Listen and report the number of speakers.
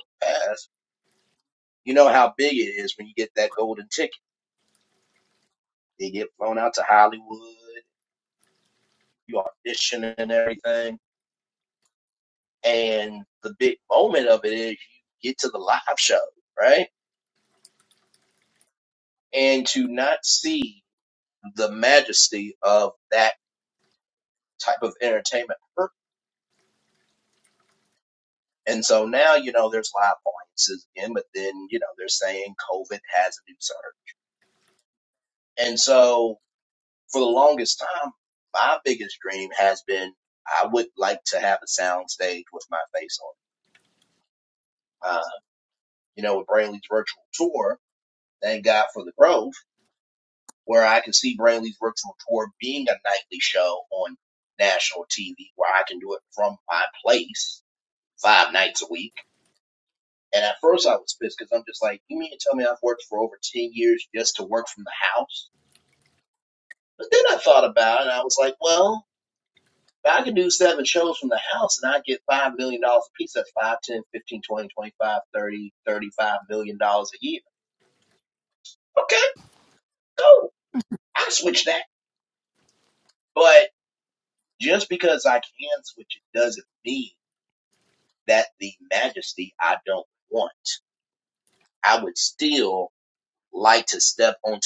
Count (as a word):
one